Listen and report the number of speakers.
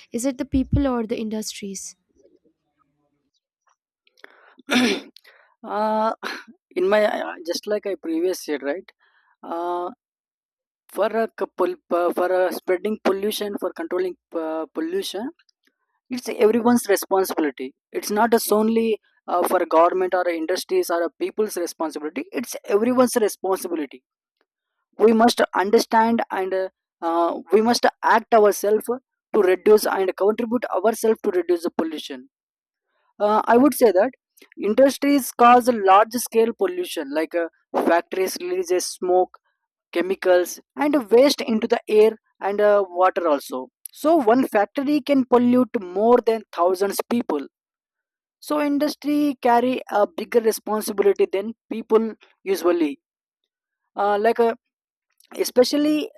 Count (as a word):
two